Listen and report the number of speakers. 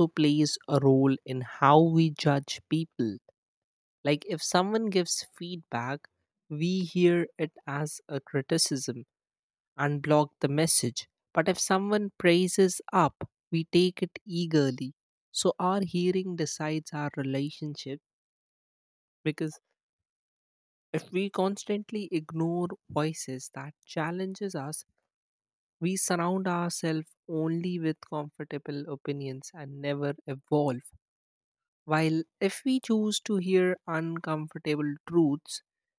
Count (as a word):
one